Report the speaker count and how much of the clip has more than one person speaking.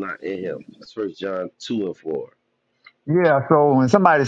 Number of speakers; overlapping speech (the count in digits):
2, no overlap